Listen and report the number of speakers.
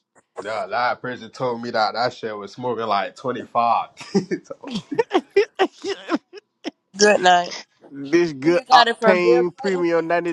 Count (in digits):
3